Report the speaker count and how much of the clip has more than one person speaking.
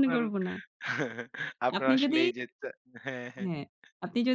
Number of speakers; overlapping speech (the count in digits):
2, about 20%